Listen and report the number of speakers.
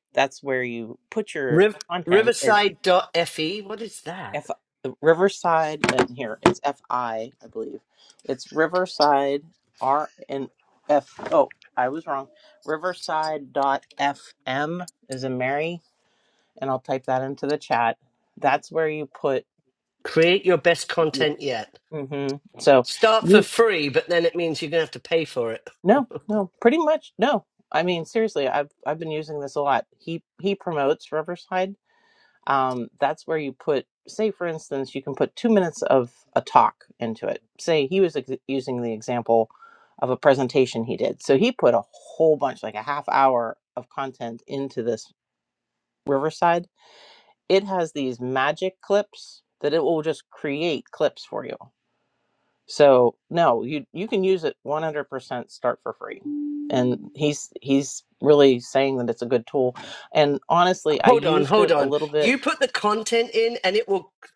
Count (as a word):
two